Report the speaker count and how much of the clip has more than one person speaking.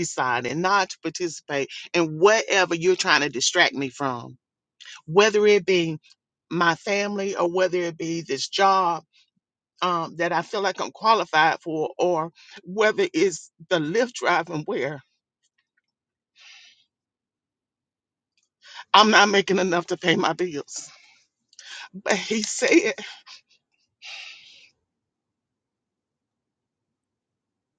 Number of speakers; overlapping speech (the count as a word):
one, no overlap